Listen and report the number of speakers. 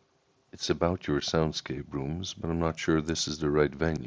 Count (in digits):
1